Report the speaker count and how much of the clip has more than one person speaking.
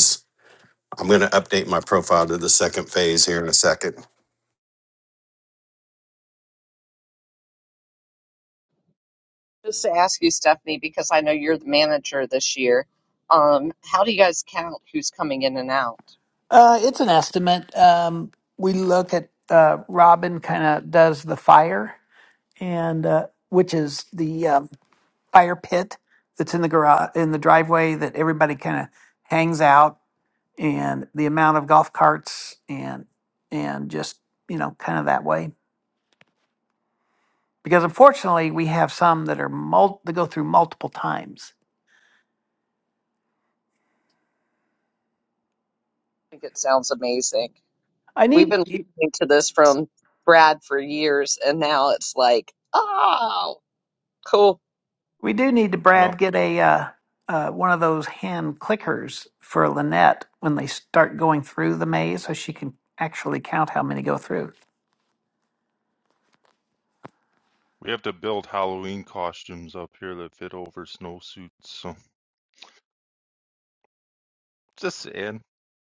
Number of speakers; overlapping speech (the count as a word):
four, about 1%